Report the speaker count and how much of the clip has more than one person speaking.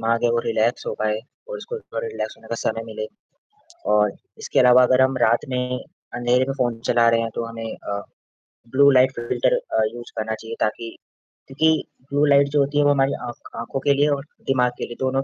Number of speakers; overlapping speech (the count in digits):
1, no overlap